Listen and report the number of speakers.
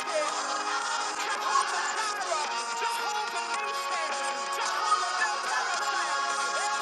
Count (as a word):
zero